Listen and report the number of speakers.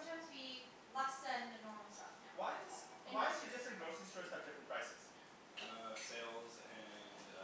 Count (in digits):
3